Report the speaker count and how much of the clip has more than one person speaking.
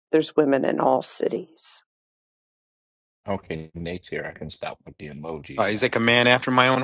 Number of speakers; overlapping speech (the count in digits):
3, about 12%